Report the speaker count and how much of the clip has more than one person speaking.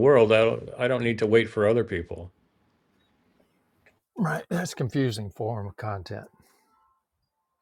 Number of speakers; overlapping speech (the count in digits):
2, no overlap